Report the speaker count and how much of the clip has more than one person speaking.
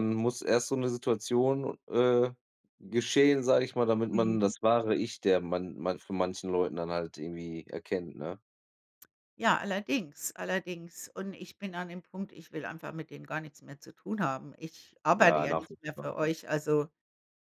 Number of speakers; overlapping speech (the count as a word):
two, about 7%